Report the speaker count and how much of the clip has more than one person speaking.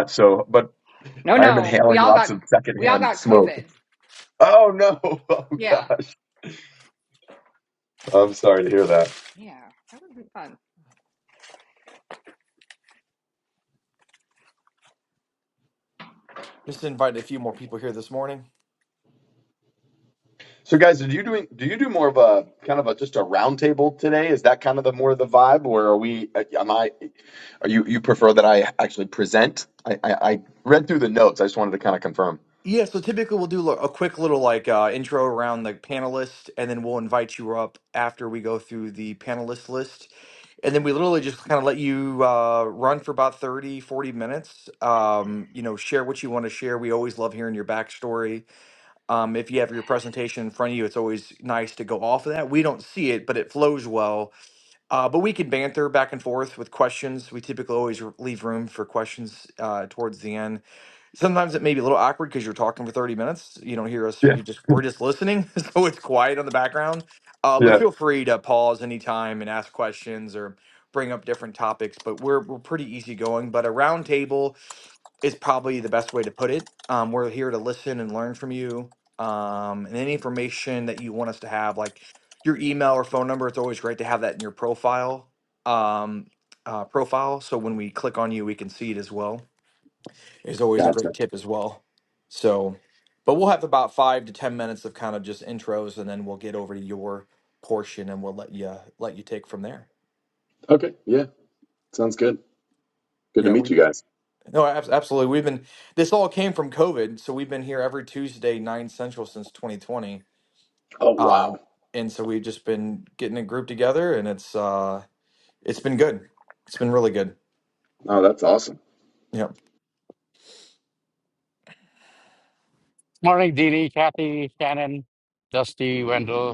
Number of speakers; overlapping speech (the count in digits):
4, about 3%